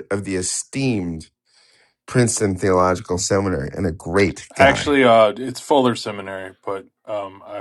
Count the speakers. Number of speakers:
2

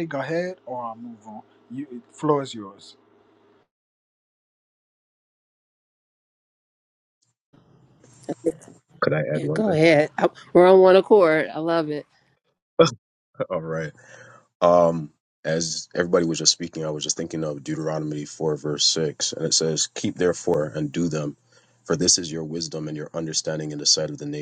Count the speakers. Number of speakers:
3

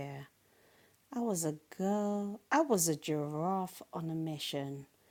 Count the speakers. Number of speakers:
1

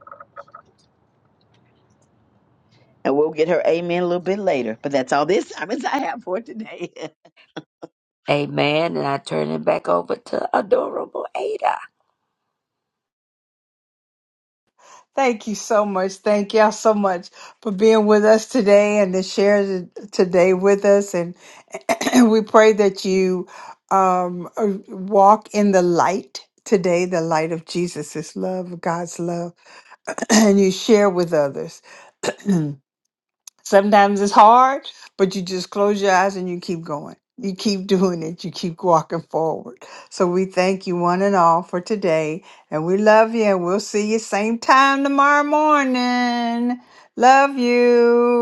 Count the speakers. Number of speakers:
3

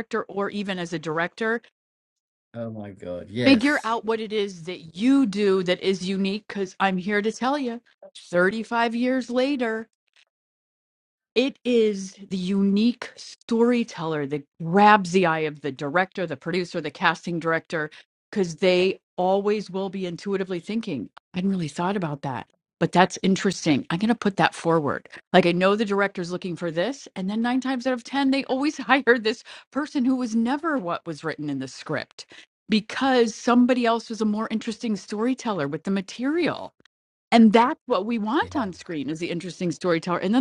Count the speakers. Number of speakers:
2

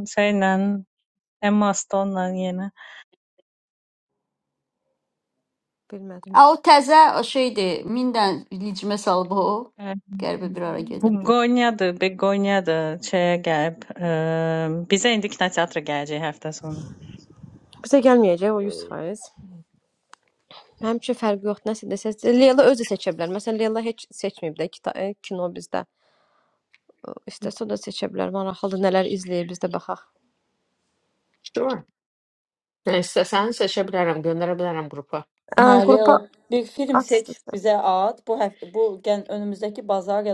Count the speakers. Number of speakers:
5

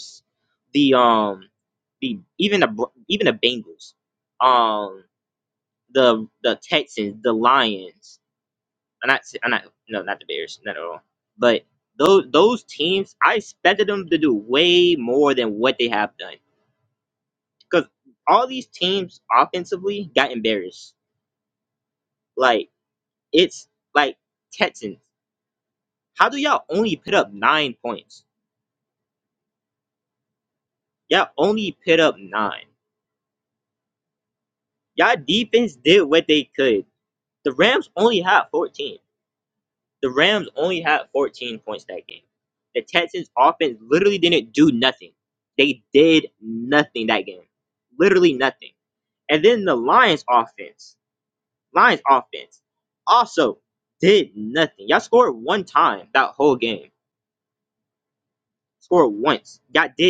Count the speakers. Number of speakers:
1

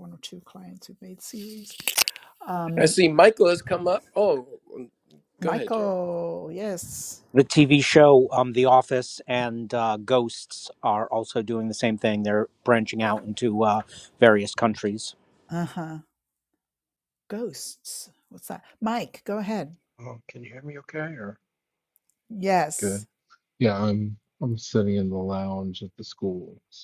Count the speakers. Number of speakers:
4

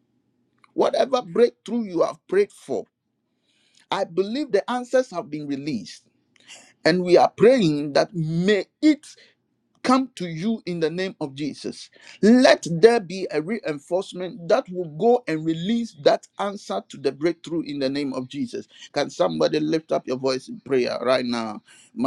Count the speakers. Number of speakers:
1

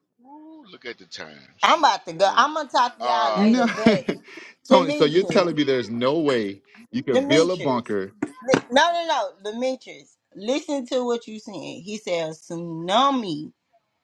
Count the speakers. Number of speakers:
3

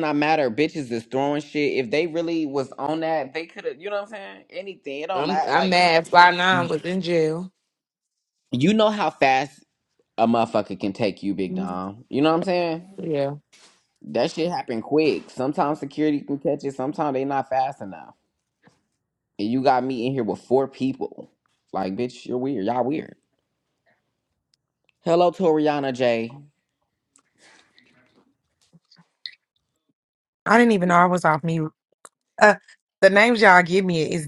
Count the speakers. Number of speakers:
3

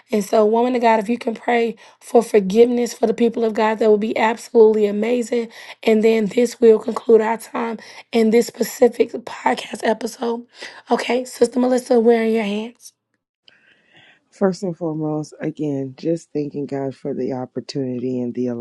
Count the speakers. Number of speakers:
2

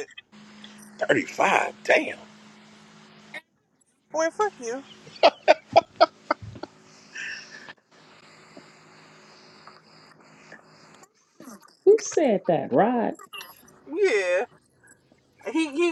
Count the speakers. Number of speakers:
3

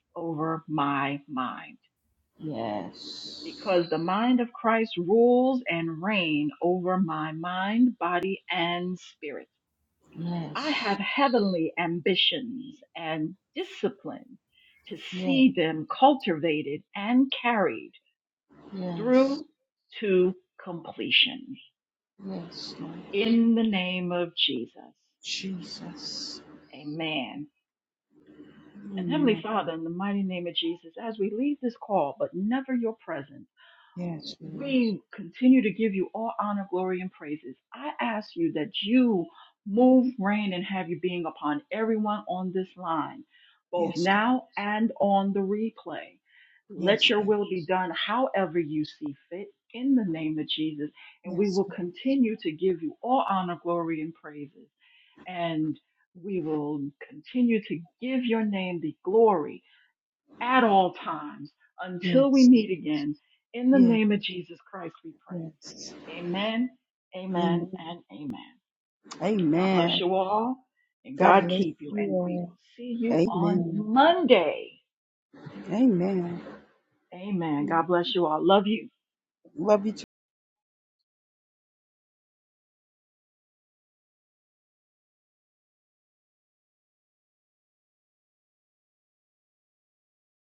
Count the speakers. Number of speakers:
2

